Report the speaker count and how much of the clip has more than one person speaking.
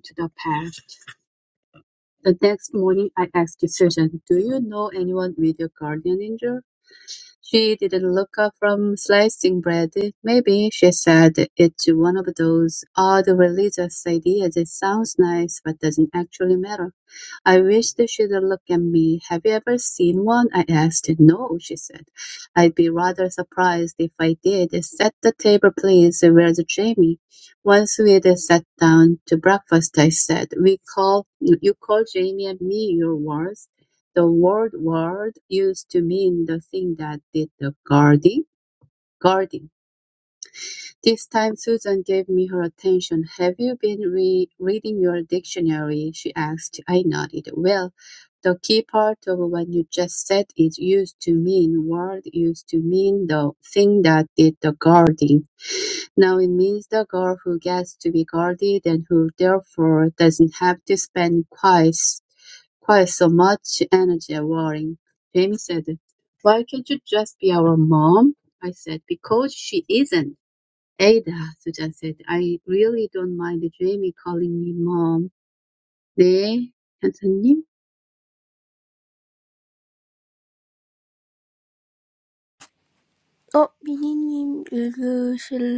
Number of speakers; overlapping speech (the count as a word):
two, no overlap